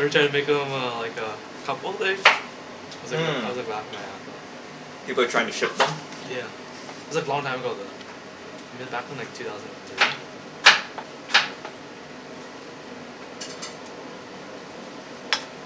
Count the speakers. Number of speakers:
2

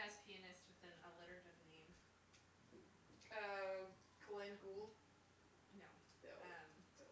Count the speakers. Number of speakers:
2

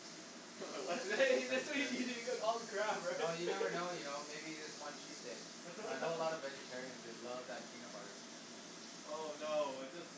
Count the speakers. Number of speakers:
3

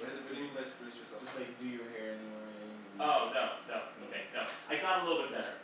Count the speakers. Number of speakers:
3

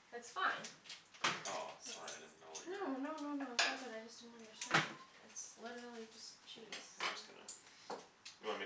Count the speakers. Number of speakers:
2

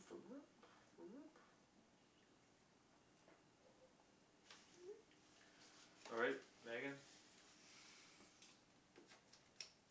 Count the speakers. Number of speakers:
1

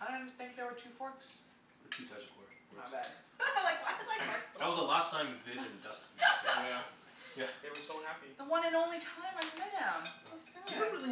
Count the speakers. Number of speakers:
4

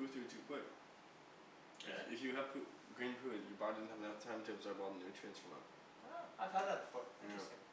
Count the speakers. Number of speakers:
2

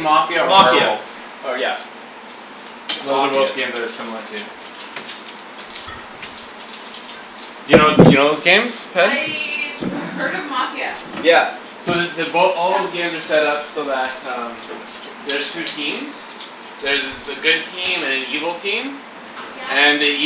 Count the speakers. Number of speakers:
3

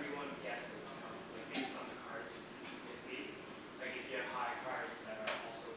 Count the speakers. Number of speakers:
1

